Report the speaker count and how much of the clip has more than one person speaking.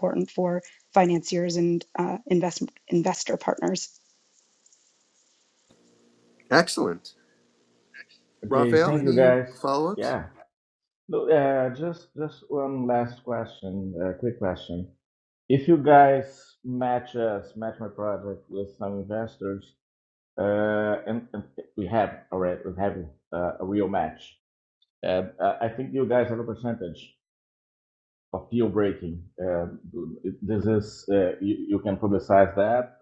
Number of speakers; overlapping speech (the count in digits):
3, about 4%